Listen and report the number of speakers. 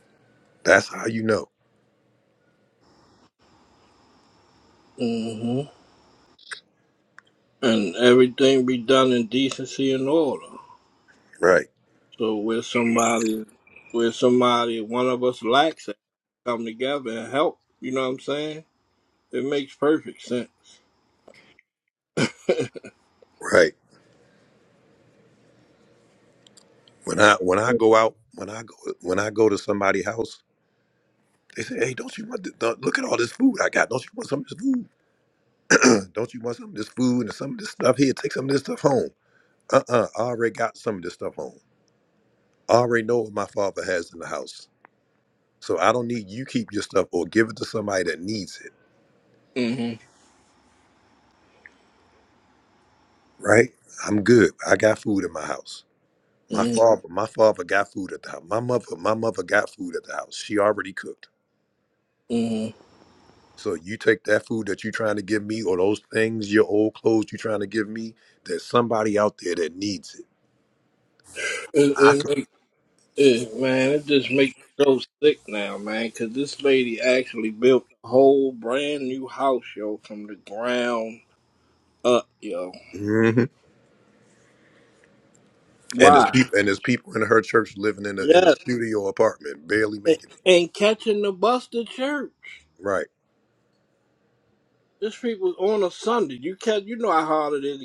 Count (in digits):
2